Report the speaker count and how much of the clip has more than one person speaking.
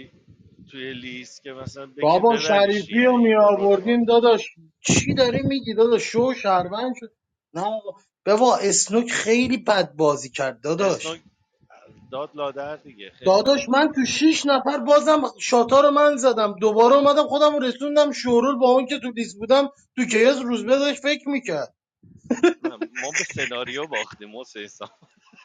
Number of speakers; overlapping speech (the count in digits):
2, about 14%